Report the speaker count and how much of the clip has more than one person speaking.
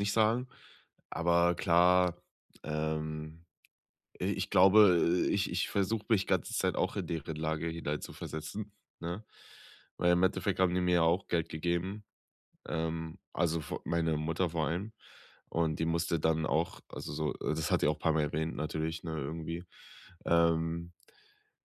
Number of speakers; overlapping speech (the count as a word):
one, no overlap